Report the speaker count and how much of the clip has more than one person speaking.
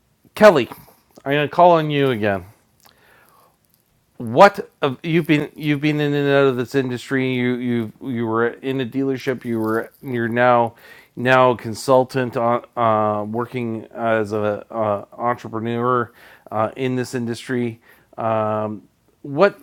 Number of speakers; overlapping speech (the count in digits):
1, no overlap